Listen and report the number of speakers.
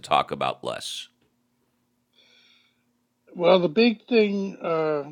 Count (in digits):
2